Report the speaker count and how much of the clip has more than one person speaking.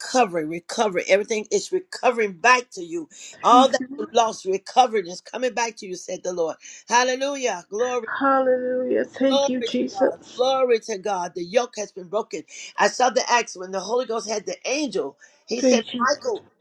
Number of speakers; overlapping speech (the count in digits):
2, about 14%